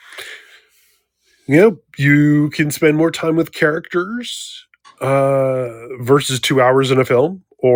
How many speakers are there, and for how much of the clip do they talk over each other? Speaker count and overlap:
1, no overlap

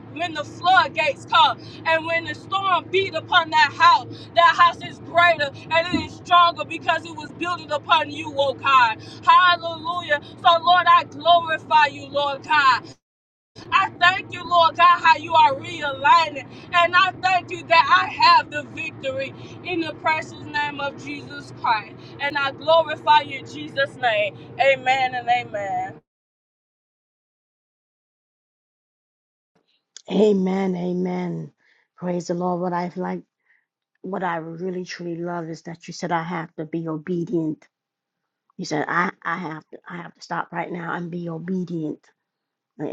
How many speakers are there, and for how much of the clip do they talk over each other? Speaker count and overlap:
2, no overlap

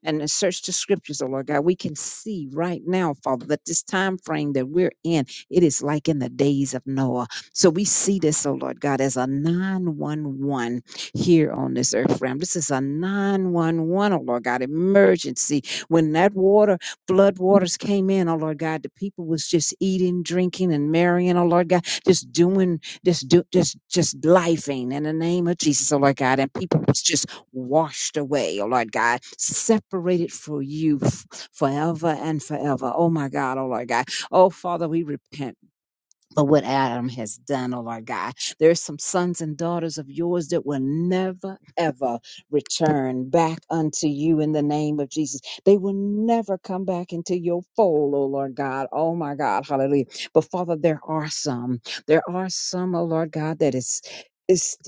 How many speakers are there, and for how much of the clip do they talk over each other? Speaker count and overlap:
1, no overlap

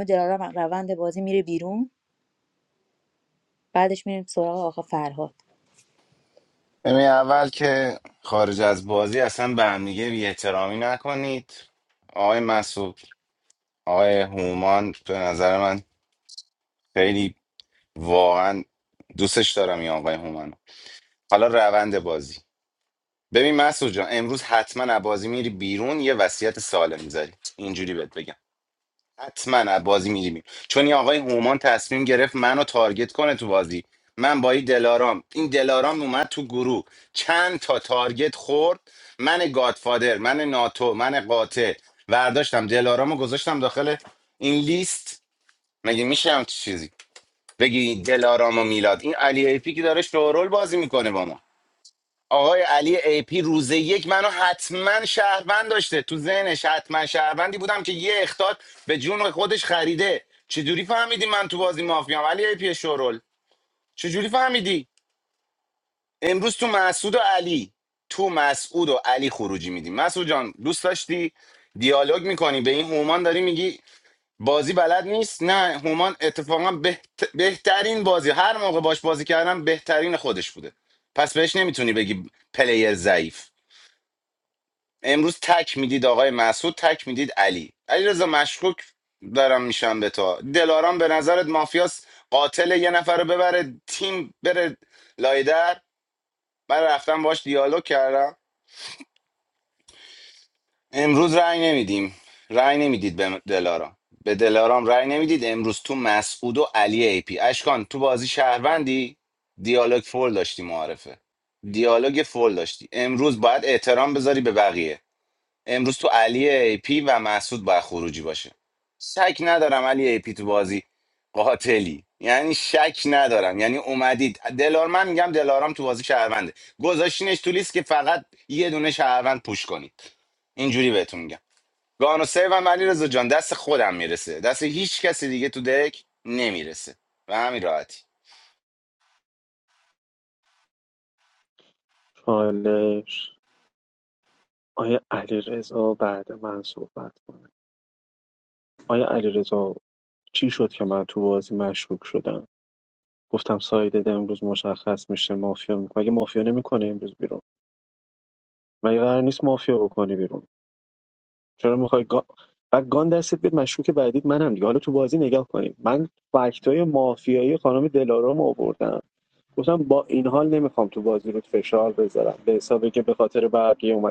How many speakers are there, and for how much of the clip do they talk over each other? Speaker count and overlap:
3, no overlap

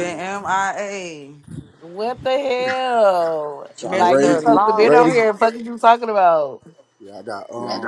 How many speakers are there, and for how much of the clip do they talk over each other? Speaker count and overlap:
3, about 21%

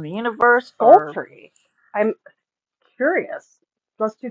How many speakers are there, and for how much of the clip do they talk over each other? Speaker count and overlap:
2, about 8%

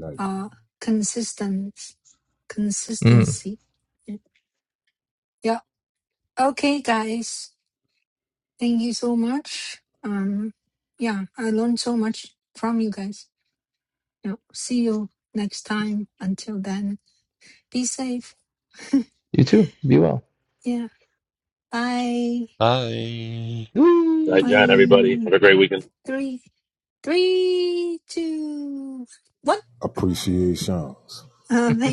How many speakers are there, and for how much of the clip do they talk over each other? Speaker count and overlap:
5, about 4%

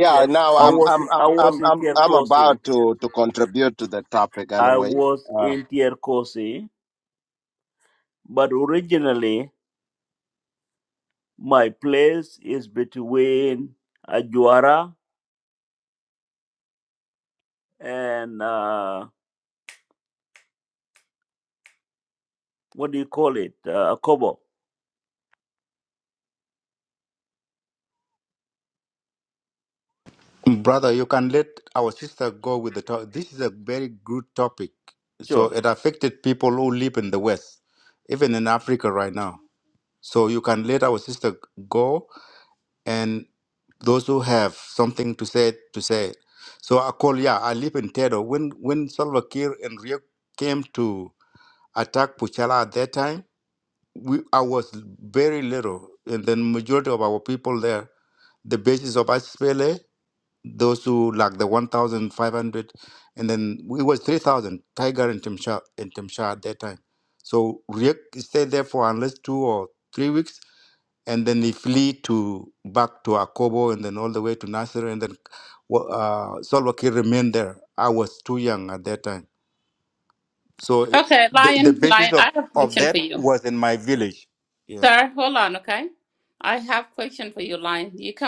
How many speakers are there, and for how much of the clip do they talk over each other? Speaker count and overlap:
4, about 6%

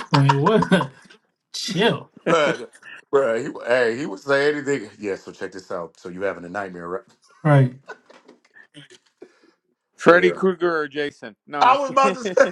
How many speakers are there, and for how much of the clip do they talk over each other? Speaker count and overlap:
3, about 10%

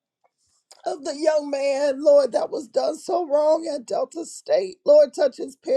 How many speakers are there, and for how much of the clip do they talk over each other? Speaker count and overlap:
1, no overlap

